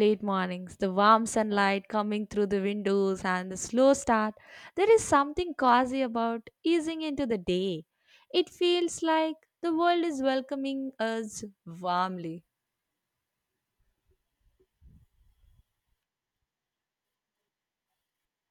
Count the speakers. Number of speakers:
1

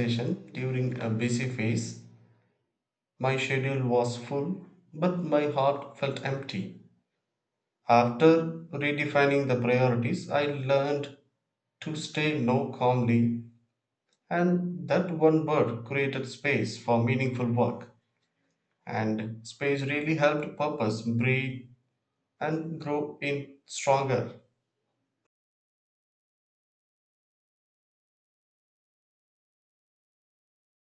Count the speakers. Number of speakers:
1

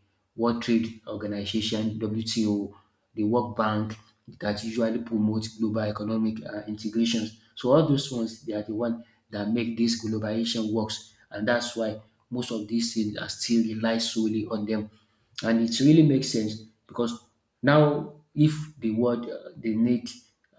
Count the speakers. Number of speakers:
1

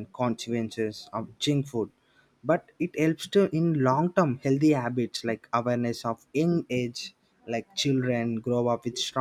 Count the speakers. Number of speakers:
1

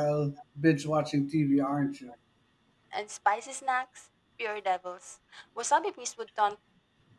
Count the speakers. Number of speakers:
2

